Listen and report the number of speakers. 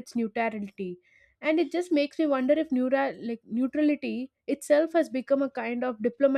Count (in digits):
1